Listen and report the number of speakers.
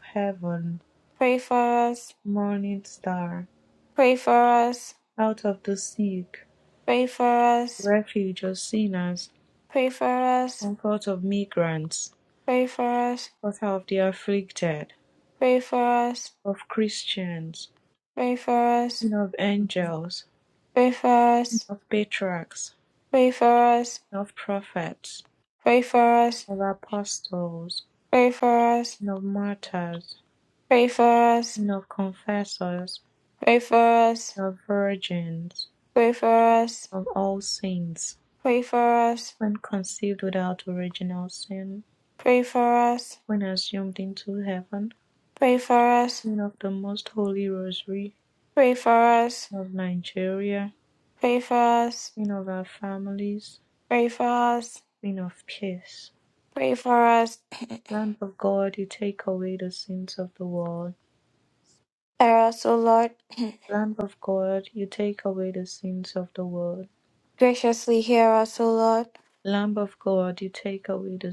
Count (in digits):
2